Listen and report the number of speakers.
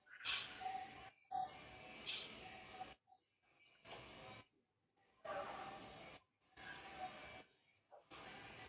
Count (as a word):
zero